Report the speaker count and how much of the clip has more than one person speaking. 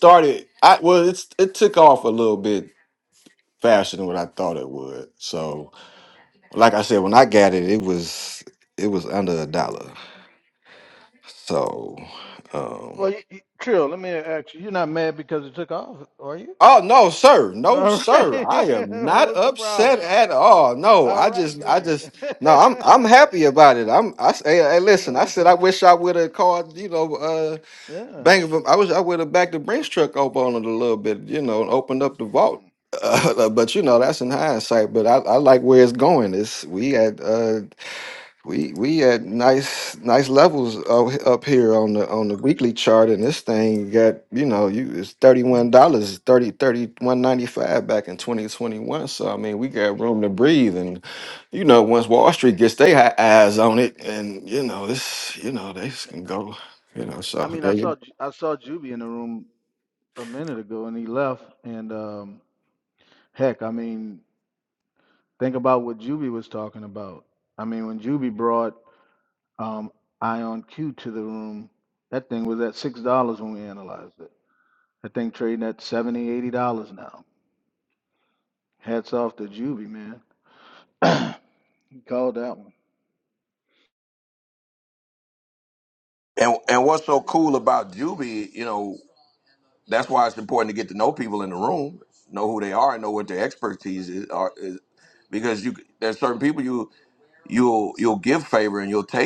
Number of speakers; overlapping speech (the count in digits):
3, about 5%